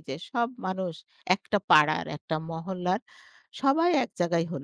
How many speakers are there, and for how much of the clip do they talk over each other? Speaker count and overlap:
1, no overlap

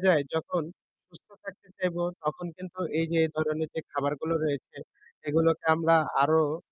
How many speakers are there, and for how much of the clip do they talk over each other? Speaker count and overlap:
1, no overlap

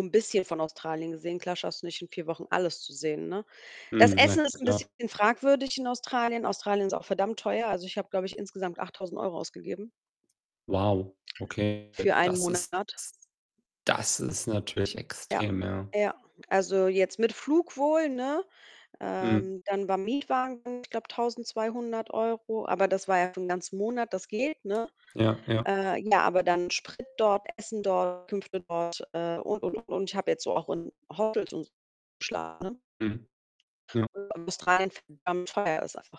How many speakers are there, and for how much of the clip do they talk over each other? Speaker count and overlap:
2, about 5%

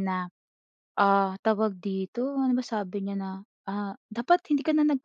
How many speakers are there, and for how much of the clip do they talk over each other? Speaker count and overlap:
1, no overlap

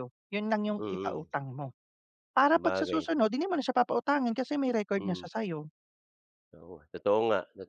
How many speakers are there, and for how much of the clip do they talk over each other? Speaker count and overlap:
2, about 16%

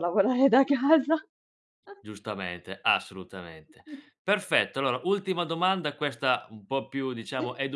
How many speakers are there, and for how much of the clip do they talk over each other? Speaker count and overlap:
2, about 2%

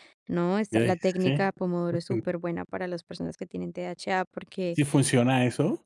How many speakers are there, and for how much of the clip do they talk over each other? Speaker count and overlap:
2, about 13%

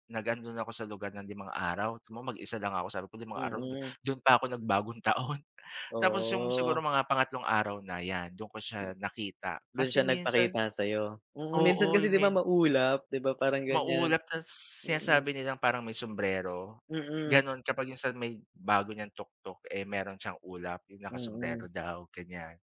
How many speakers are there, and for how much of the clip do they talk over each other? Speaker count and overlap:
2, about 18%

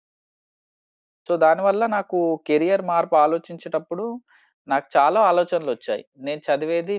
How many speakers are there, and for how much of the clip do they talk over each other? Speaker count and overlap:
1, no overlap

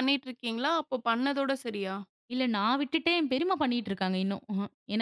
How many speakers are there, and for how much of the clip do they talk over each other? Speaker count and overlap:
2, no overlap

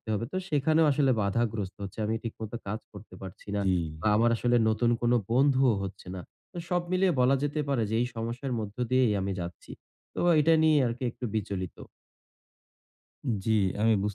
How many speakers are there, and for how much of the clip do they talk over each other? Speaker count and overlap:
2, under 1%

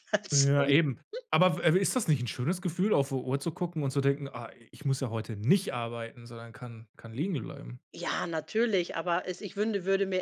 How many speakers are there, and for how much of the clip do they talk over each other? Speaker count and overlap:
2, about 4%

